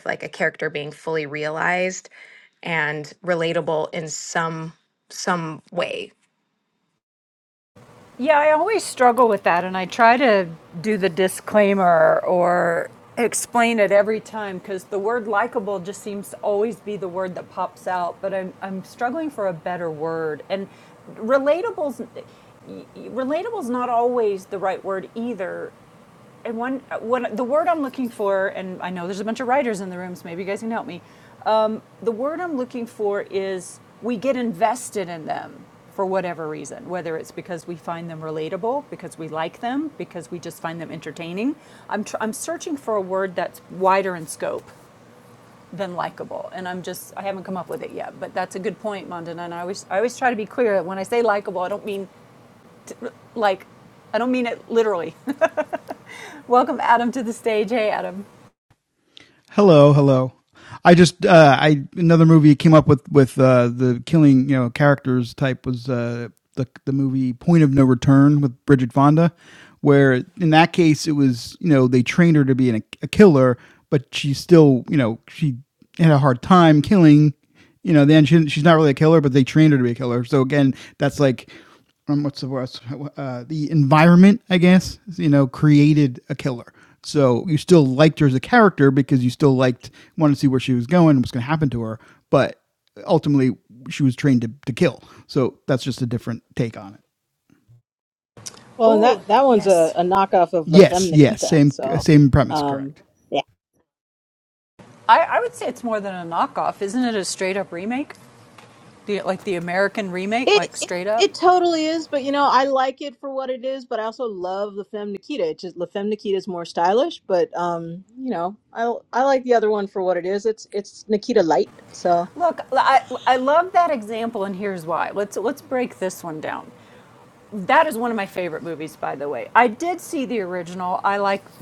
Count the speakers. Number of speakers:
4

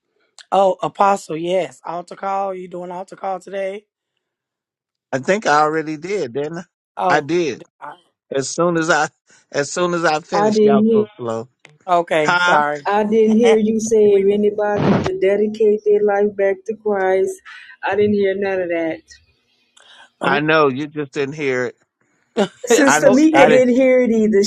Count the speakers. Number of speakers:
3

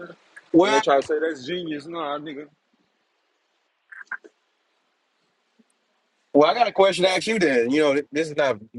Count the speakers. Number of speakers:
2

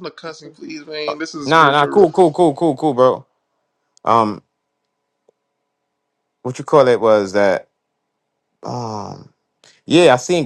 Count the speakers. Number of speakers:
2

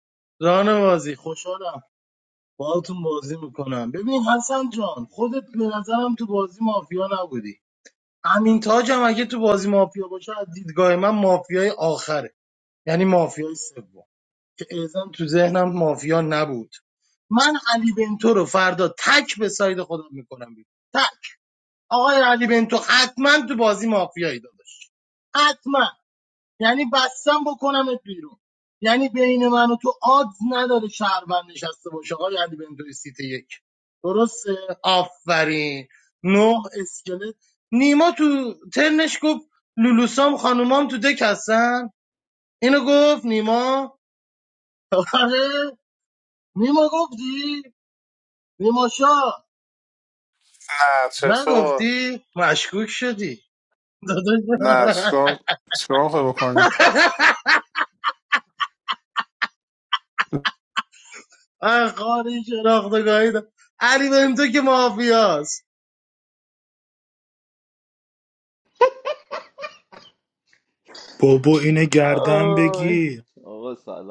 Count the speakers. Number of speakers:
4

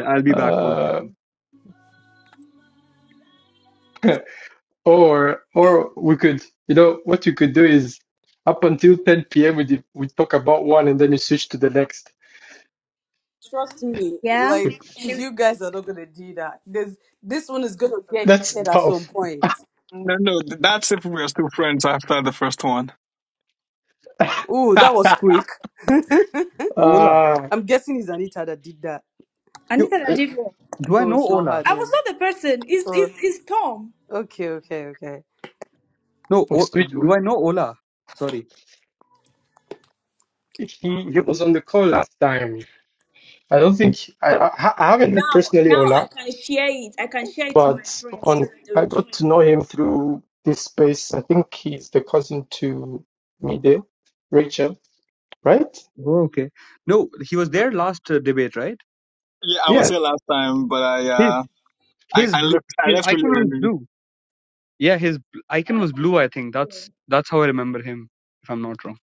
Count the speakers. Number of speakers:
5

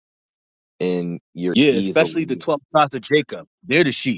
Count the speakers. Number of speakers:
2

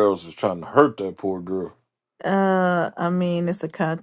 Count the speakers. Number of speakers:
2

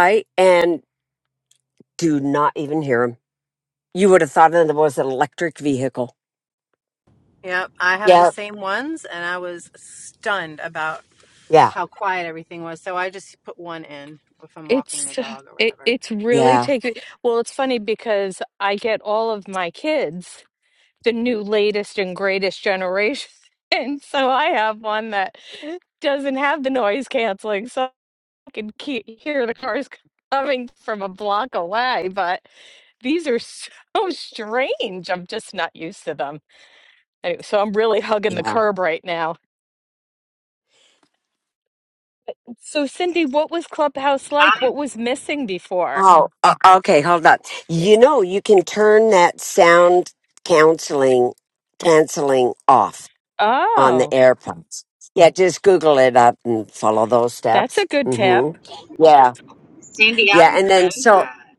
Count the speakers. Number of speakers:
4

